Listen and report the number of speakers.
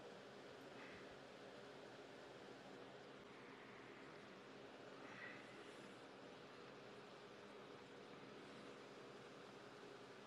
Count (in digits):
0